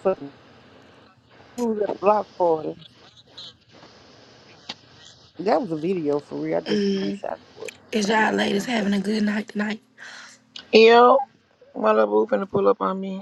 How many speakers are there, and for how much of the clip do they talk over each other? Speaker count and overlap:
three, about 8%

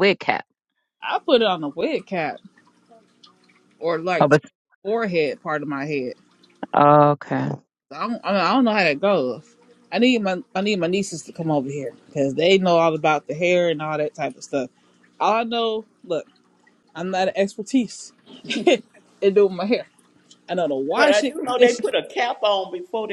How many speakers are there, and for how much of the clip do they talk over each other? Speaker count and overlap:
three, about 4%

